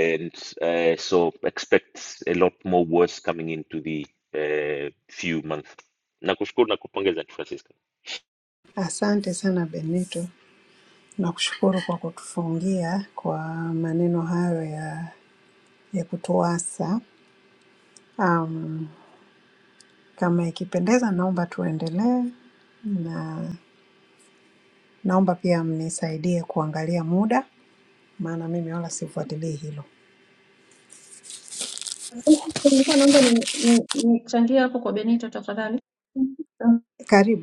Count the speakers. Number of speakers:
3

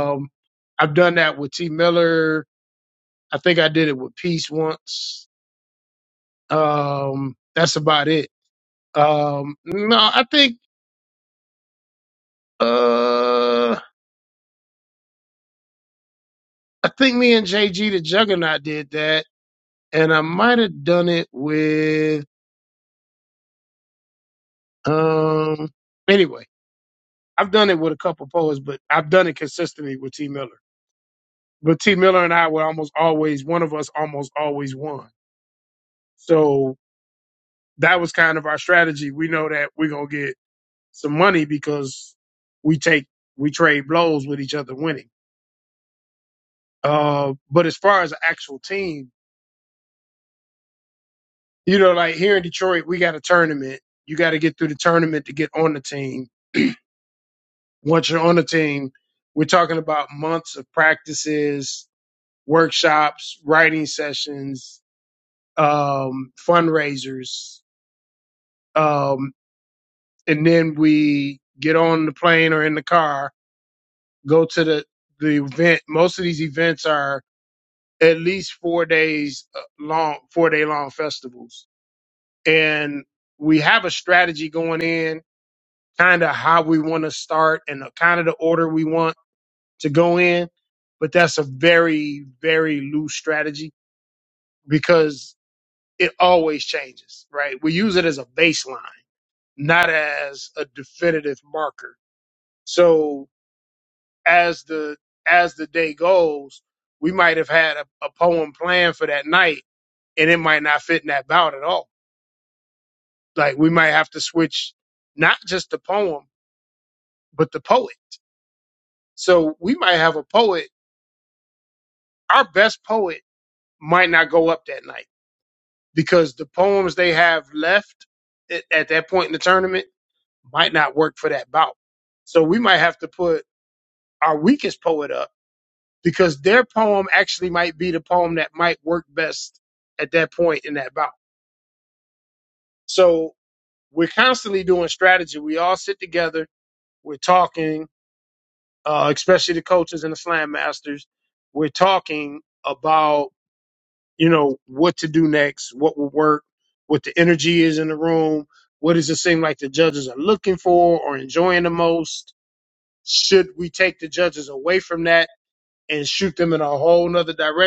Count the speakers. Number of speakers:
1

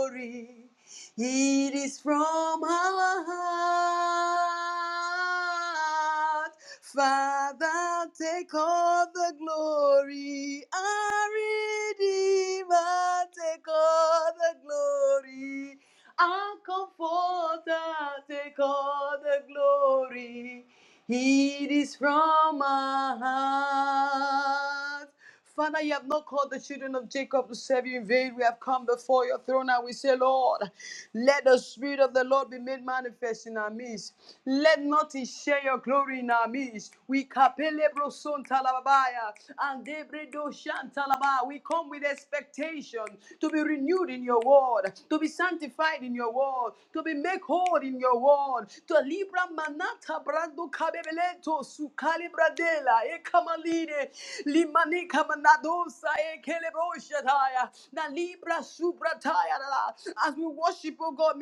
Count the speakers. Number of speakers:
1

